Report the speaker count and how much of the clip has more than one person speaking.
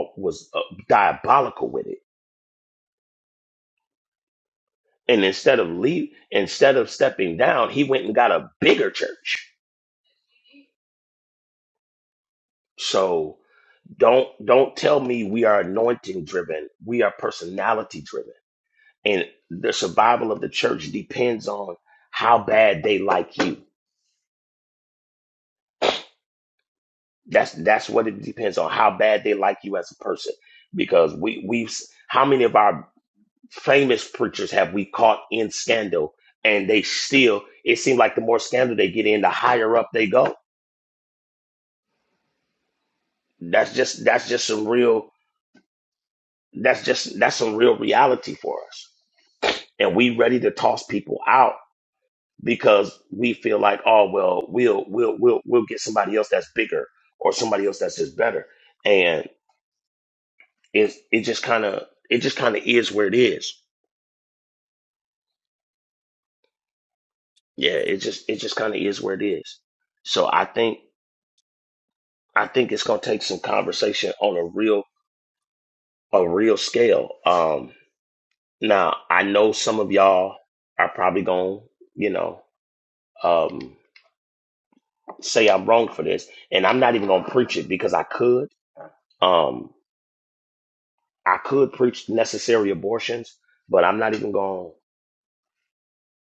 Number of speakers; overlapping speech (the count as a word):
one, no overlap